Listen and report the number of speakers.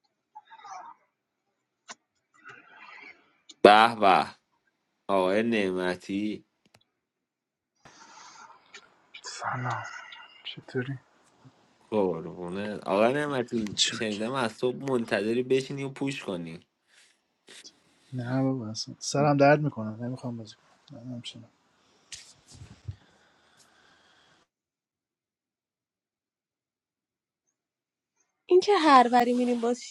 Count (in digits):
3